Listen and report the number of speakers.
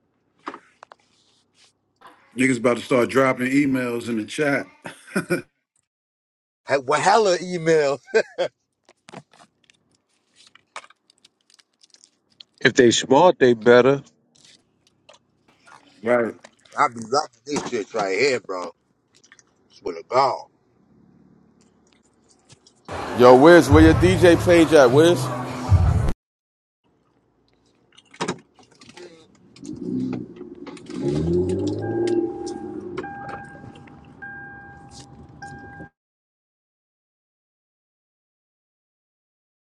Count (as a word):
four